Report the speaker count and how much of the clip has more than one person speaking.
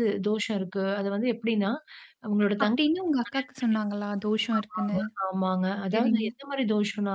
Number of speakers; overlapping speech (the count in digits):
2, about 9%